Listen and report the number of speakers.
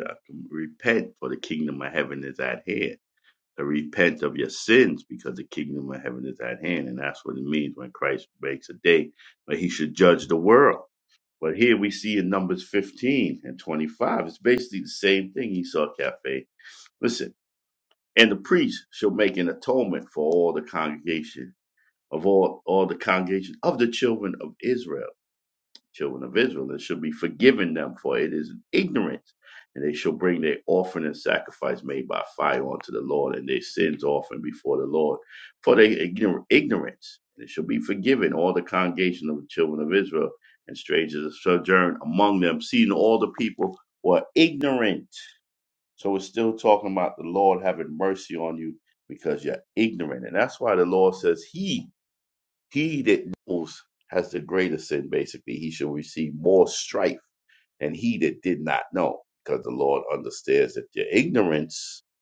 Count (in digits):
1